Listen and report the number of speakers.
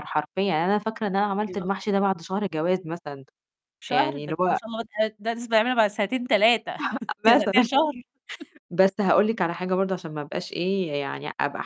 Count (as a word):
two